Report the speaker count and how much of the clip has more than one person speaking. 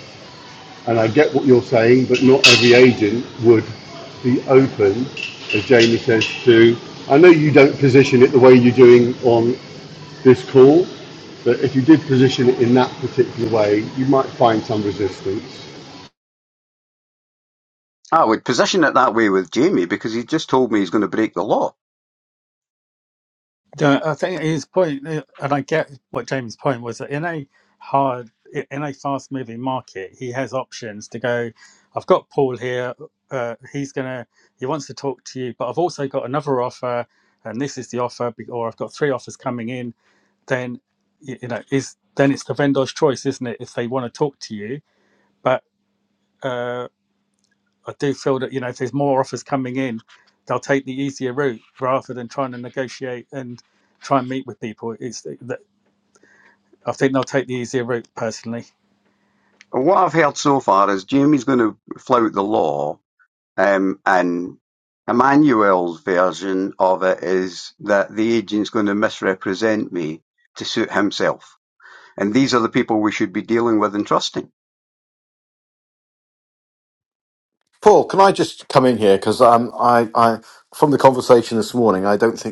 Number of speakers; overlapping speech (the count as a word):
four, no overlap